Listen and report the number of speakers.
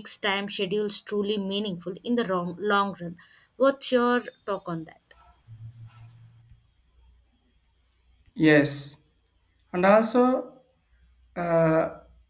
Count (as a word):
two